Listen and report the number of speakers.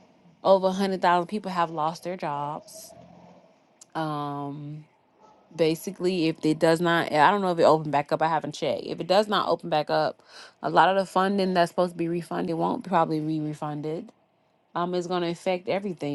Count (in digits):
1